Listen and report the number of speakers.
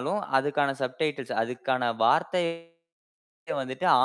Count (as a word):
one